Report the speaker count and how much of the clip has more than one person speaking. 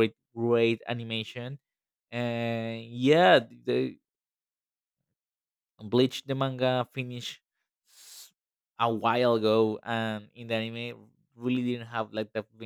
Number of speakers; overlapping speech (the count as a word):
one, no overlap